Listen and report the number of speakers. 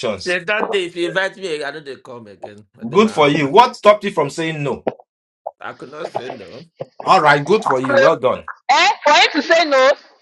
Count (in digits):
3